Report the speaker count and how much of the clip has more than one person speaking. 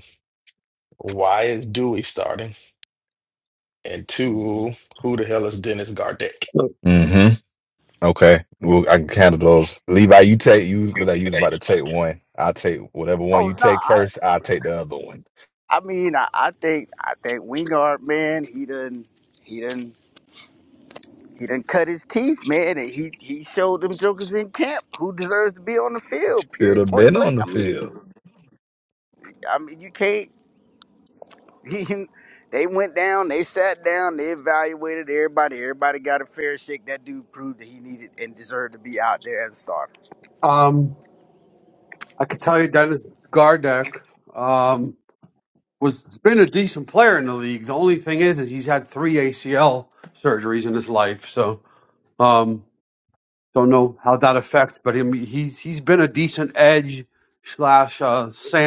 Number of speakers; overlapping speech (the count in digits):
4, about 3%